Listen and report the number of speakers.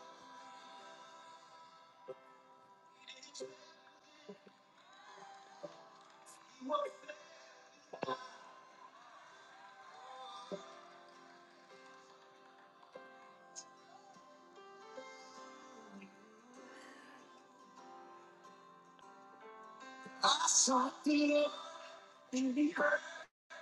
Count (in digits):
0